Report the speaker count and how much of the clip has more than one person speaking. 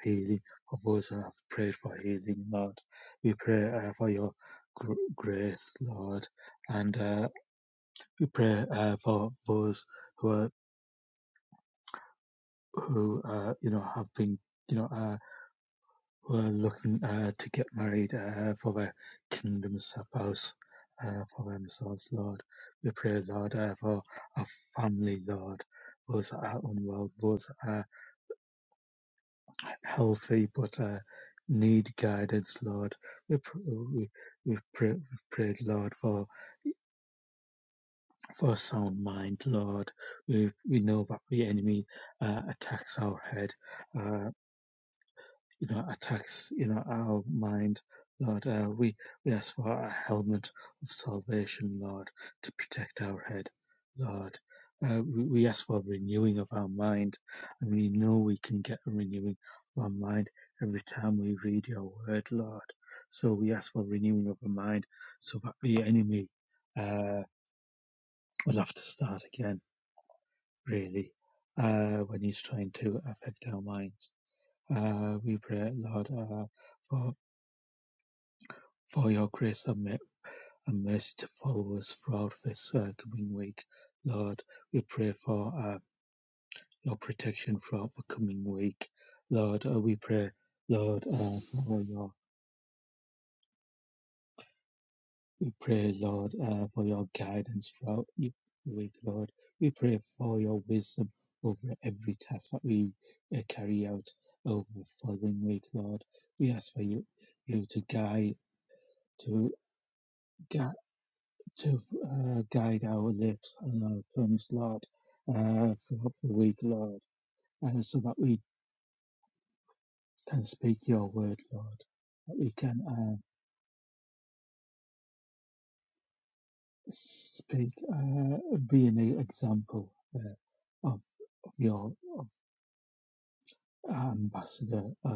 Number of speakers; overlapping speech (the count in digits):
1, no overlap